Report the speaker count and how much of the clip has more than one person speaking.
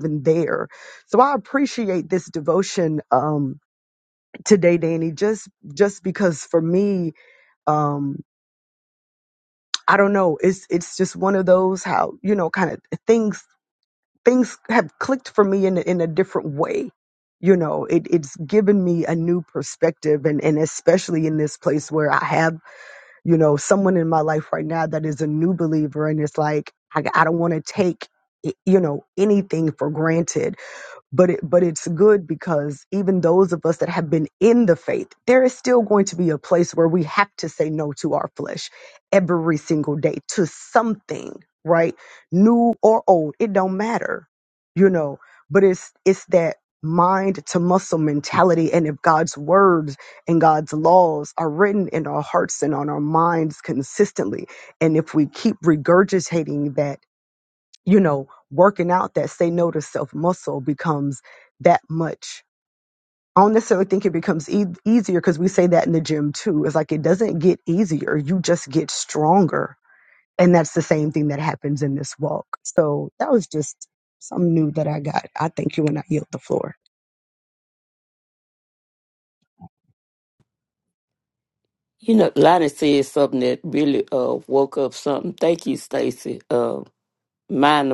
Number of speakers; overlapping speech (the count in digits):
2, no overlap